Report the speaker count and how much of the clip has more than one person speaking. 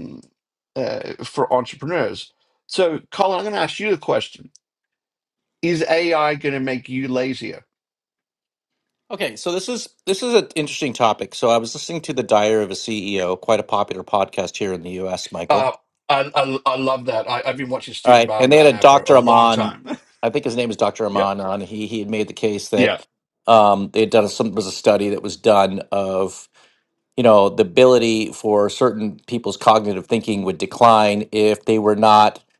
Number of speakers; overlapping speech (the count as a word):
two, about 6%